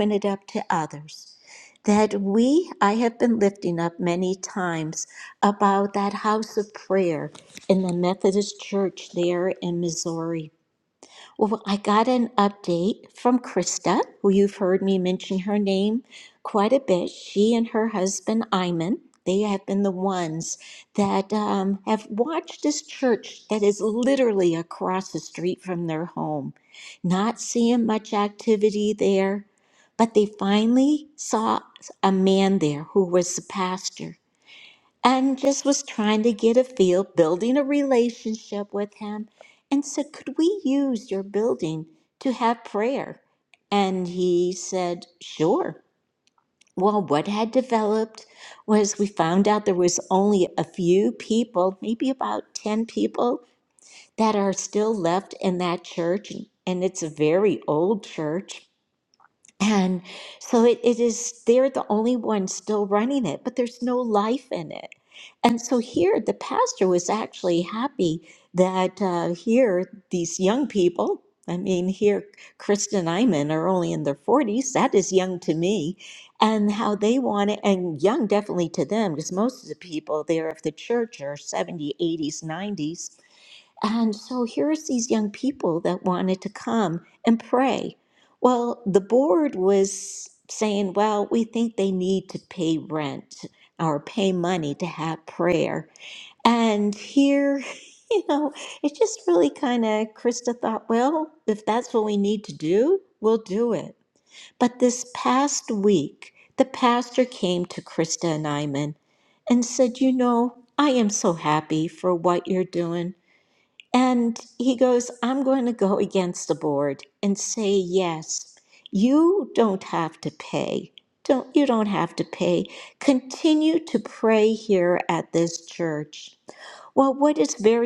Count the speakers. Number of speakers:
1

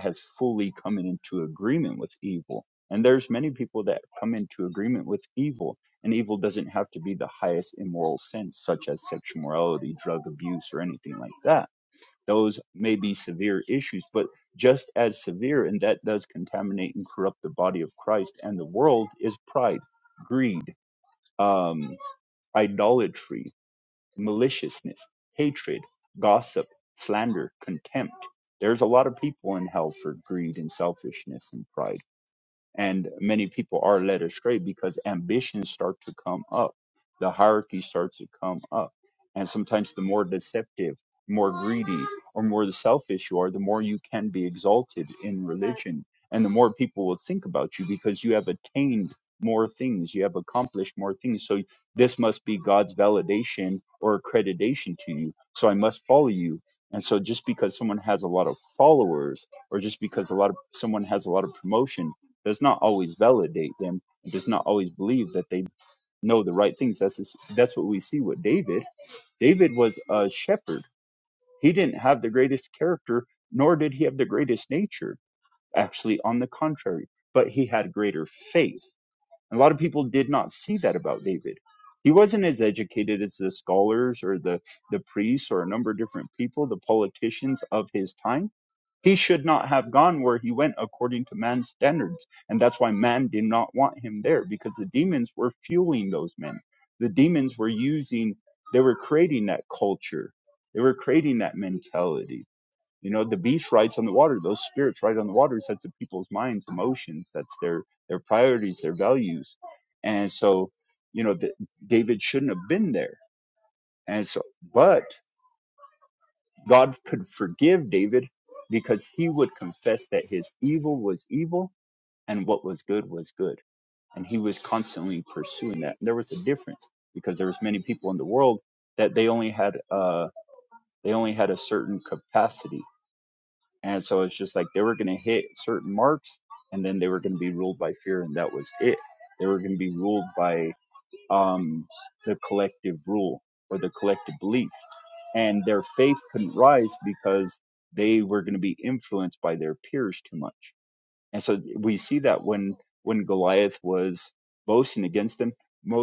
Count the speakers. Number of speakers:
1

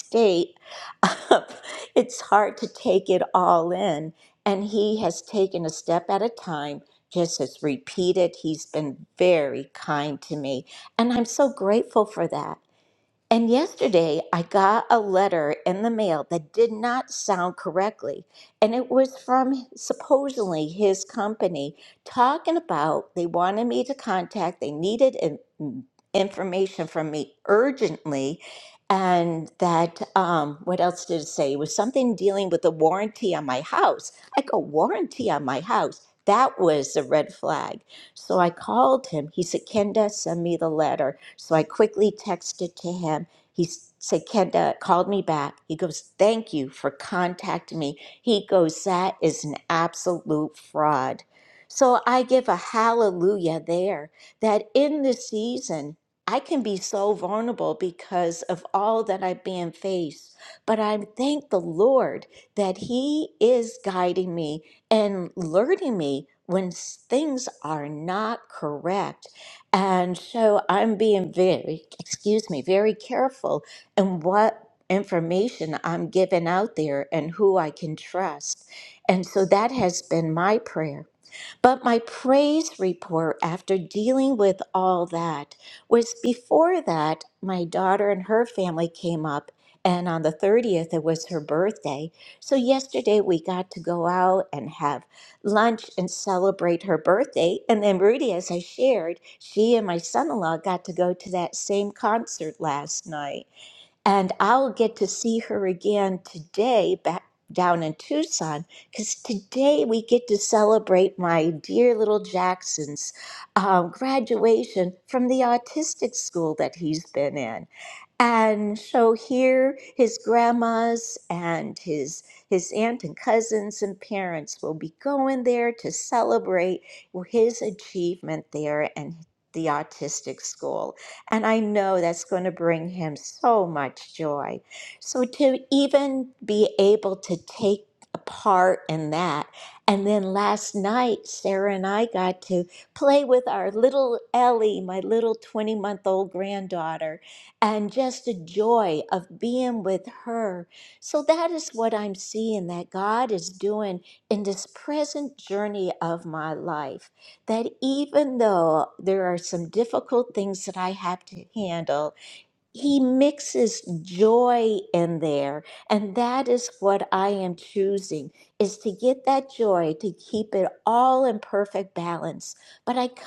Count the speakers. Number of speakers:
1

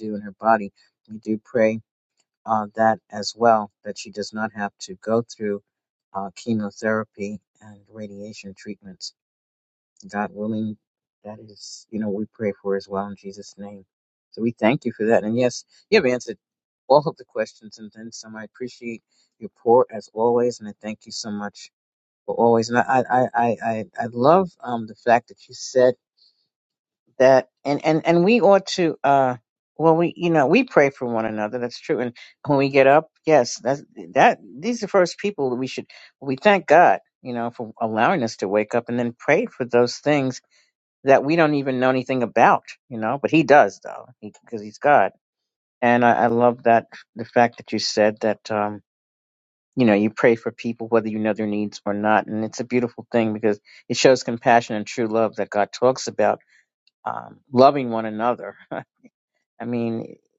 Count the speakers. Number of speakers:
1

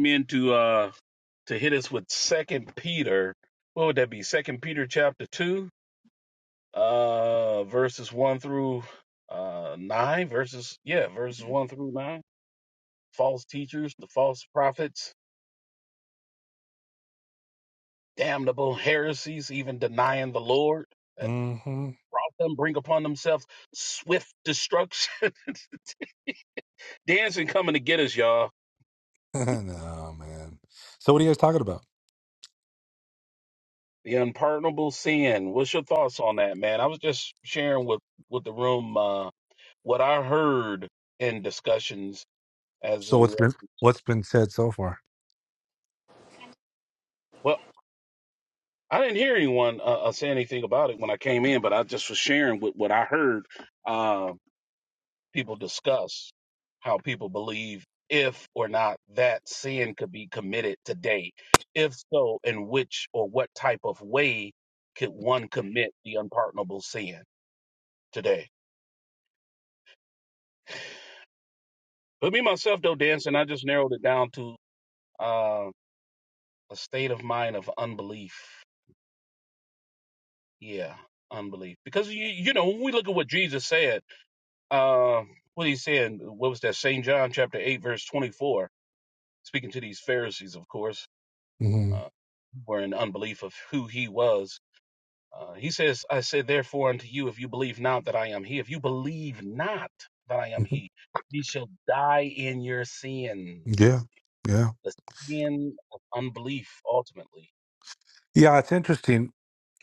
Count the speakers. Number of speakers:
2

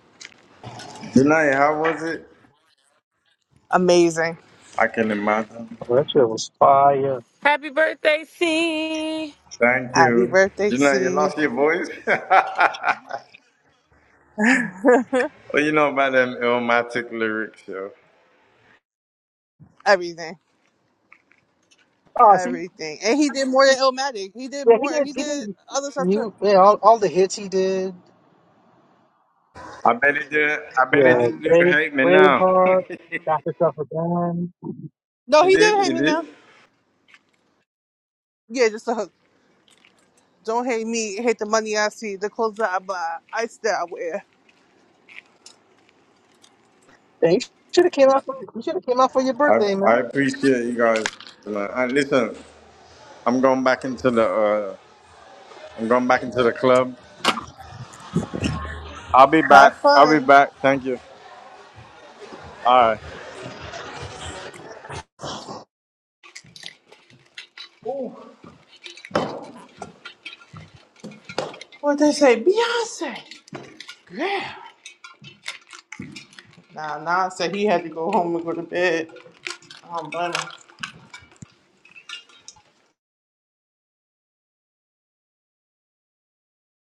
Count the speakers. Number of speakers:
4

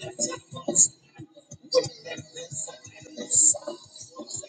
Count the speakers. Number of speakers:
0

